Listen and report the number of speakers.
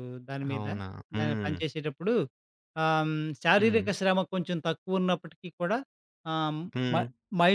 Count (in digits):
2